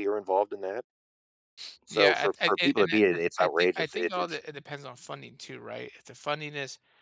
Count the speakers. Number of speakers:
2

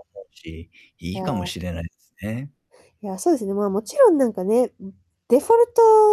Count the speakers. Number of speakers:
2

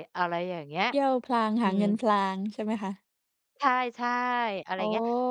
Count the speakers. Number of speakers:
2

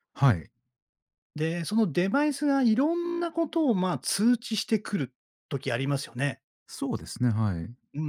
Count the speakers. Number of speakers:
2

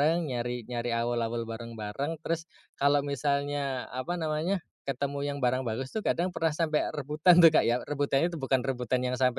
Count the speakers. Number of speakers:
1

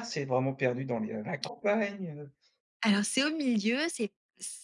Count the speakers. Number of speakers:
2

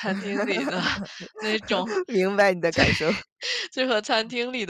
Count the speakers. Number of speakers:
2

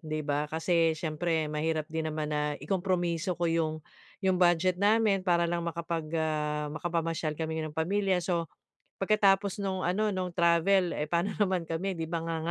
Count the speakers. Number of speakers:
1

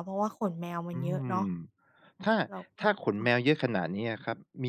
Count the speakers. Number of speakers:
2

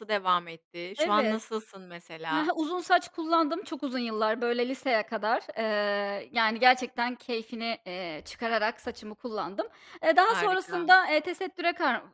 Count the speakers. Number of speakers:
2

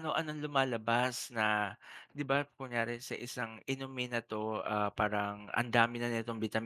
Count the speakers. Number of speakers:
1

